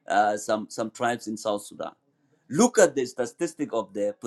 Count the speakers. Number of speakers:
one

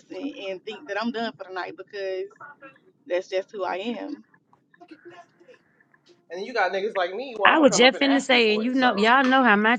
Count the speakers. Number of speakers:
three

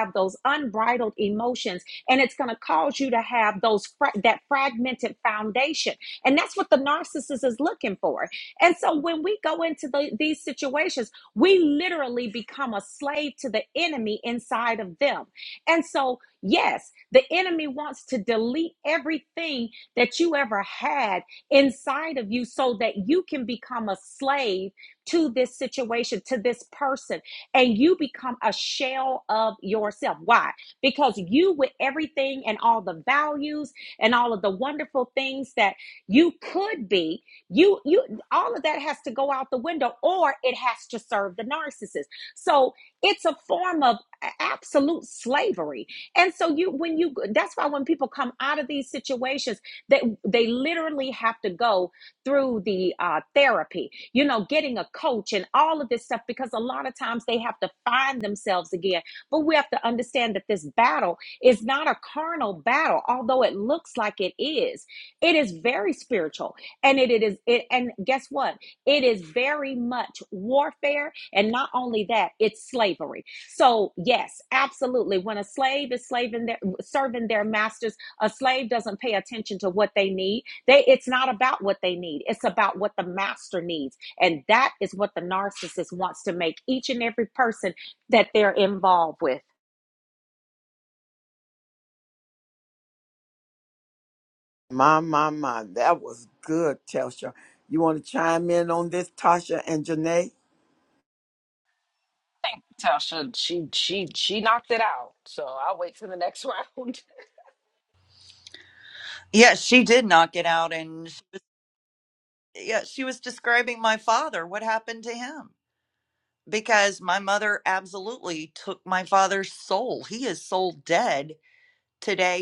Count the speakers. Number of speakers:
four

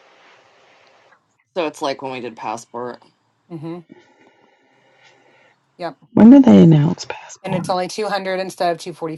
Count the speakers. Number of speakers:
three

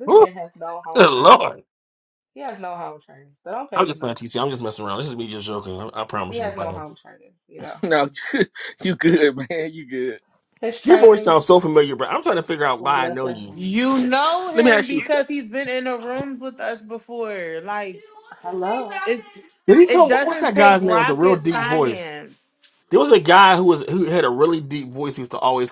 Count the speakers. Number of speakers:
four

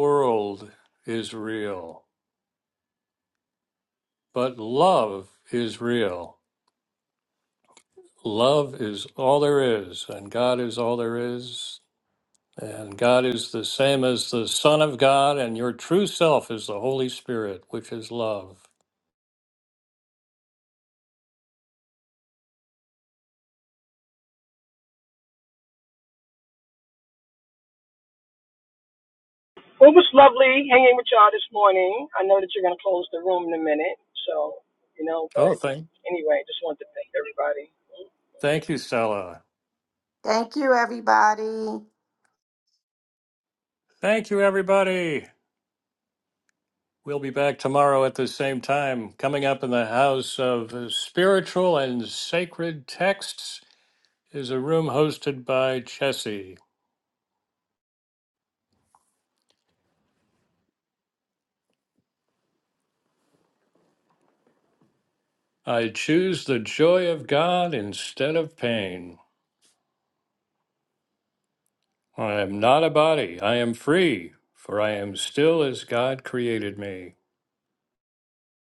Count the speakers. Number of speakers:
three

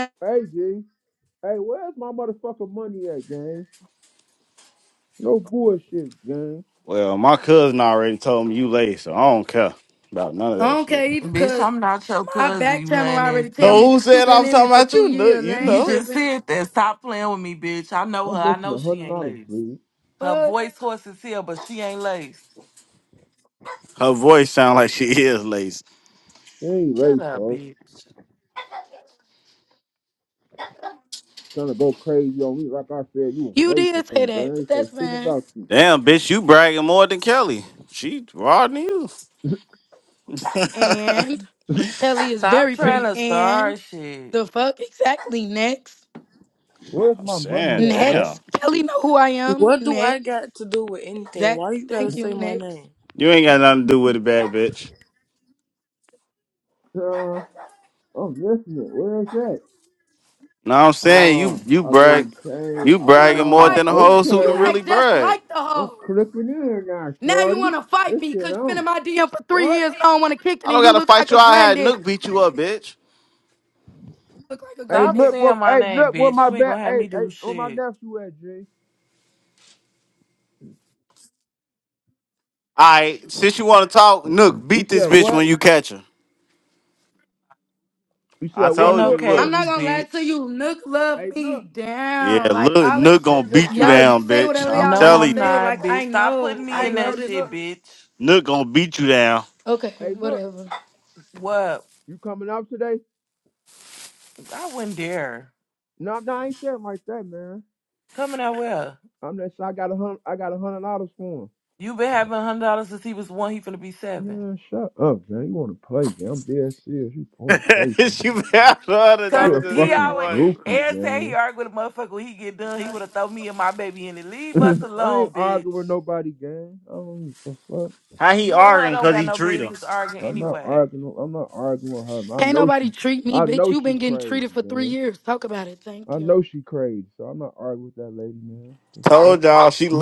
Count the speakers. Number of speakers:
five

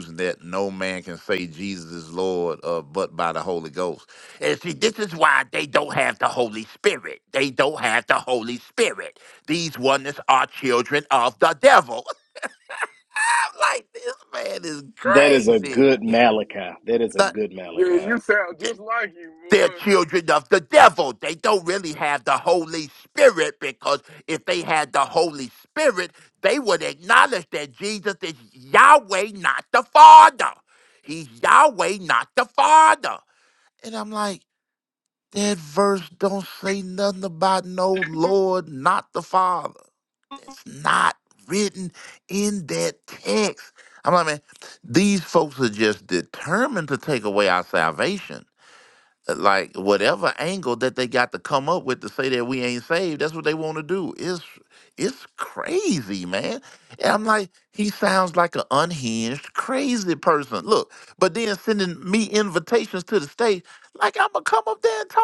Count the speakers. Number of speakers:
three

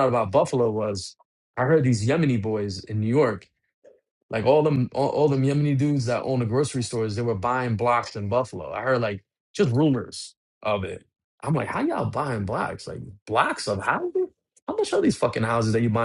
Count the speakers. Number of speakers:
one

